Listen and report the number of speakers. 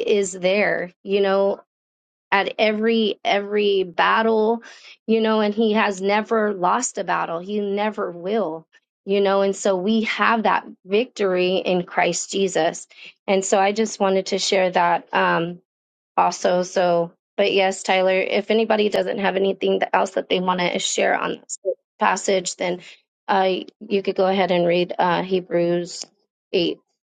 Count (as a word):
one